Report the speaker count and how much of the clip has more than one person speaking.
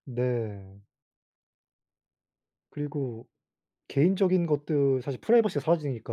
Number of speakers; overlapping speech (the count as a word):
one, no overlap